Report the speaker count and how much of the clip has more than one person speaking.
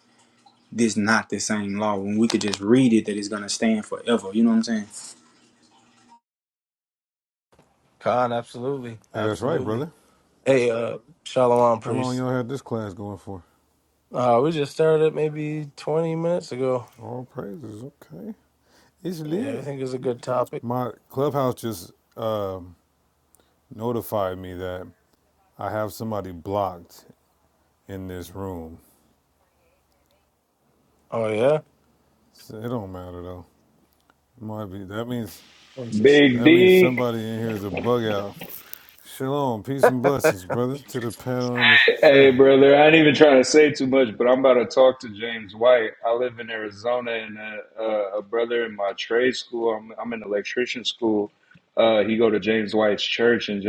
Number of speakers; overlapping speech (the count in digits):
4, about 5%